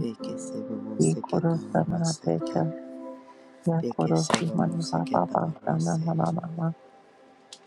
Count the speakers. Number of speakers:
2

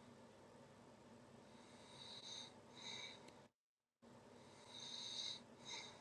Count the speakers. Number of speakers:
0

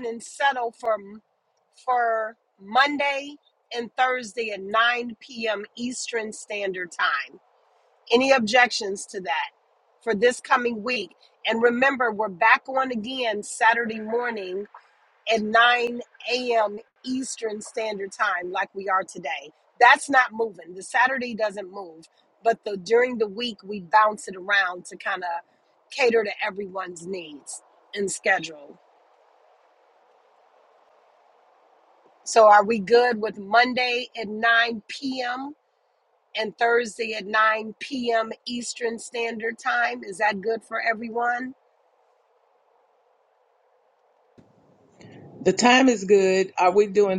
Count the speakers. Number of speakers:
2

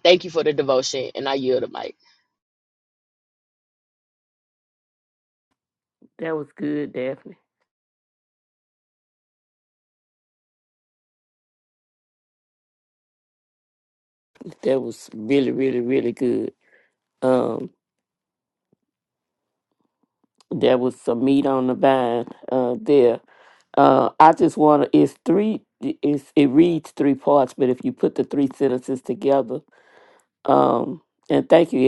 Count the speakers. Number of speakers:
2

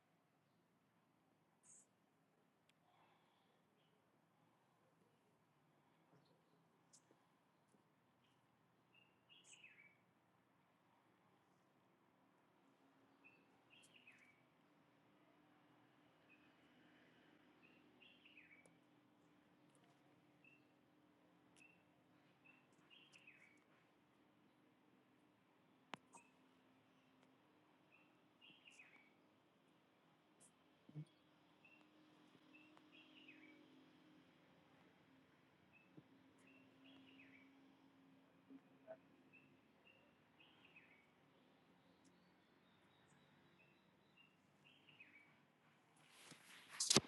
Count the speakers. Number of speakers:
0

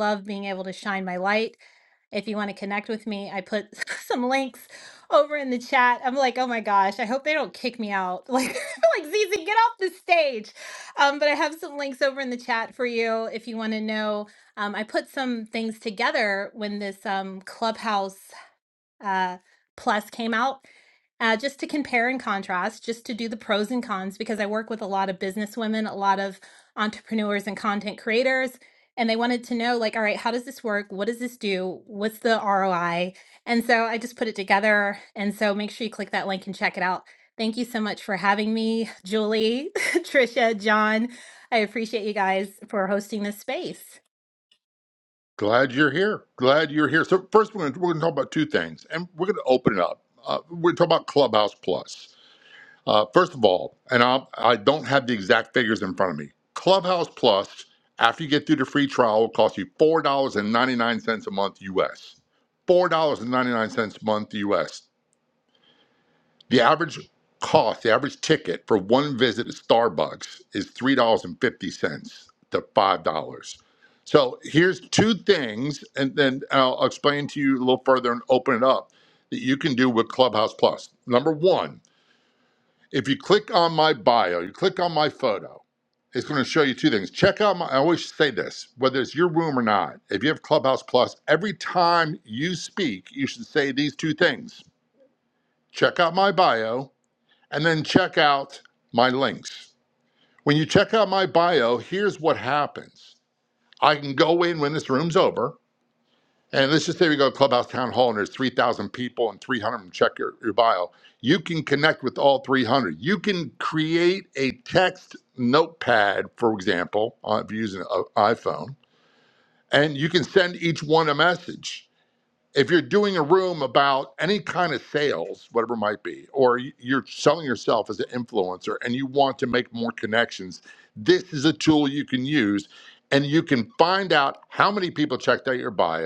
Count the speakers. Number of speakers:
2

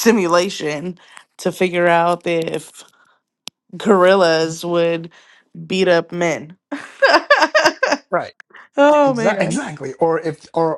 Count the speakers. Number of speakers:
2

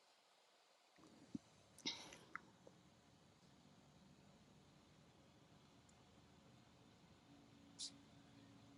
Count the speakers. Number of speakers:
0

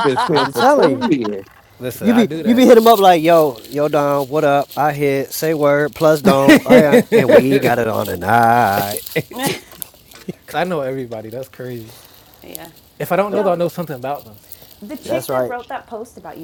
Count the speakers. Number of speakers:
4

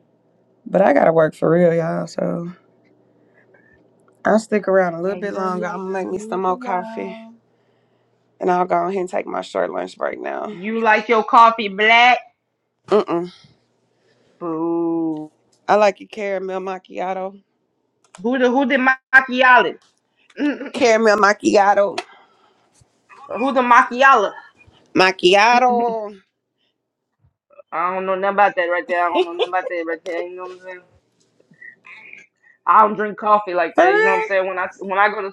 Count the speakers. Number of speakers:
2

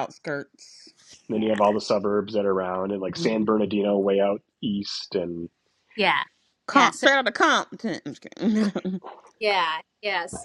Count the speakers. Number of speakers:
3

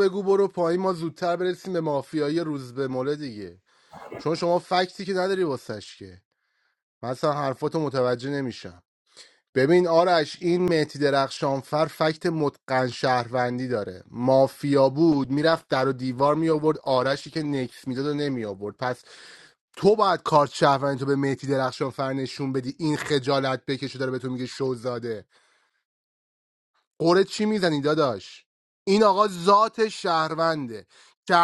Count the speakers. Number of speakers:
1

